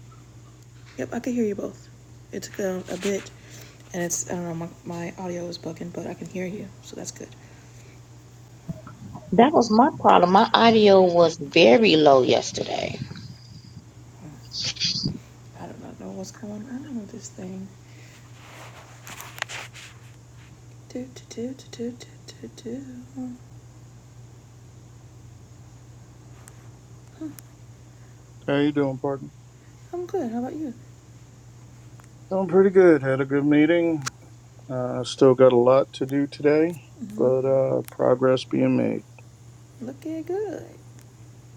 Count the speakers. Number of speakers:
3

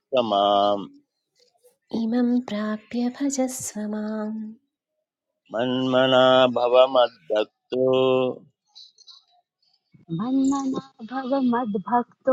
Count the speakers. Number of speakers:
3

